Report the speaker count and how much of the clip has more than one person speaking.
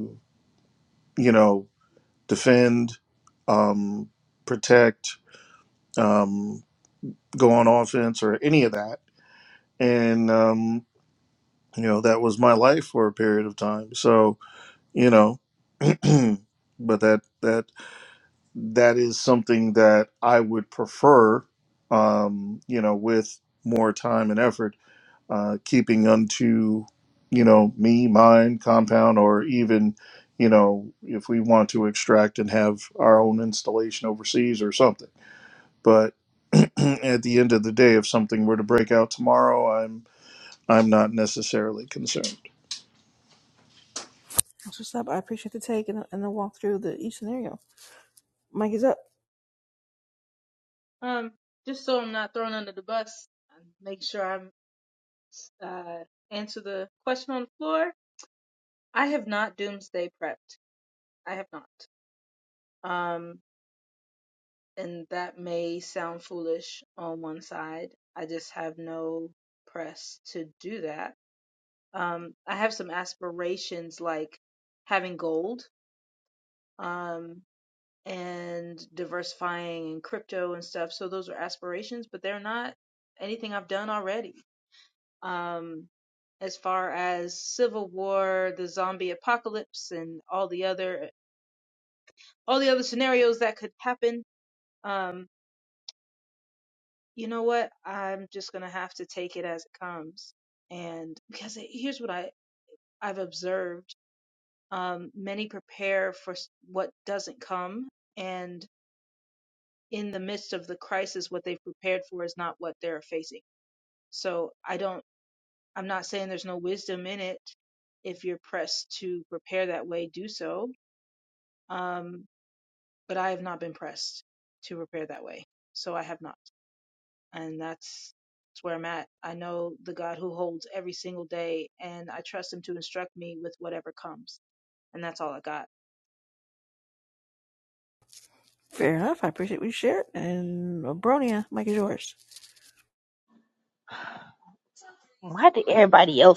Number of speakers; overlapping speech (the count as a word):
four, no overlap